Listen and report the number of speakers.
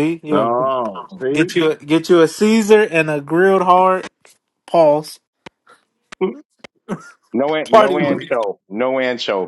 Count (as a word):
three